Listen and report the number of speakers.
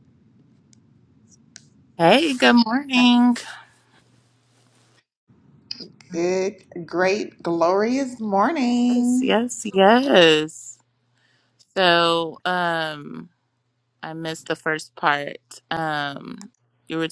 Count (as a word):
two